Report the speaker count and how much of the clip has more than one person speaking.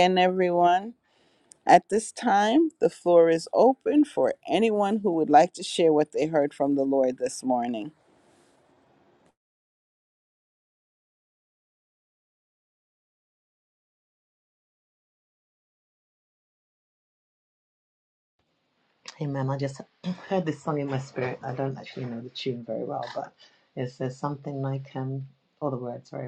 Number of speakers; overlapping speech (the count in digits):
2, no overlap